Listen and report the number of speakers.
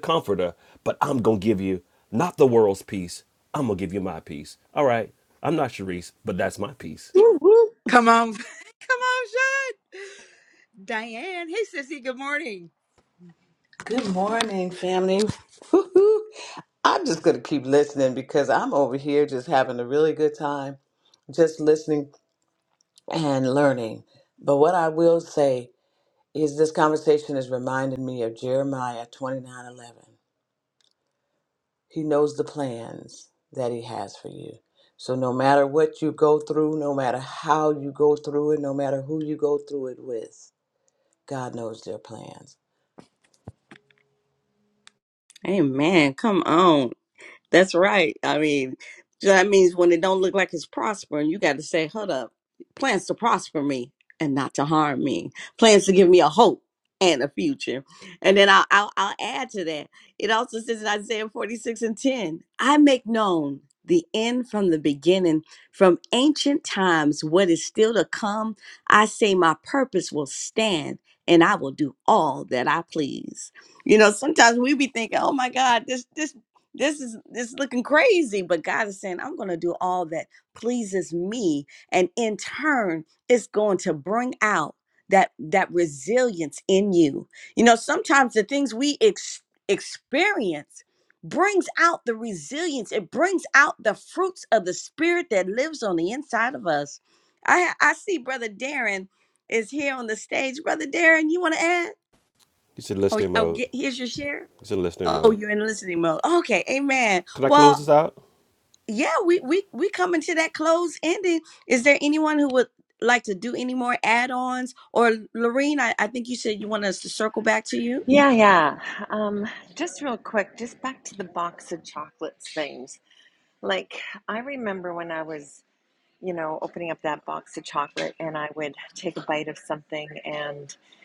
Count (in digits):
5